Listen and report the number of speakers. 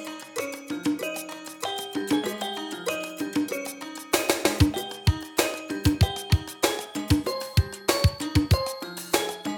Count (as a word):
zero